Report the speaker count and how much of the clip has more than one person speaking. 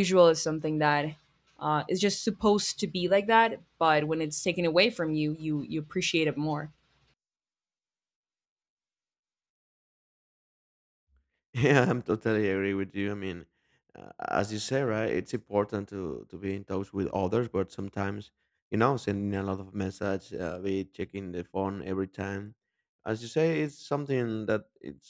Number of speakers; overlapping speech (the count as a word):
two, no overlap